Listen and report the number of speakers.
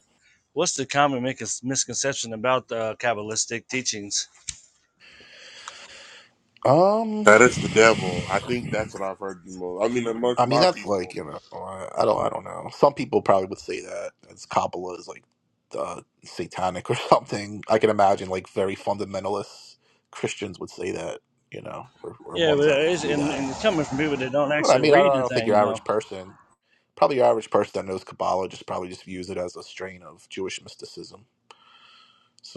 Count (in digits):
3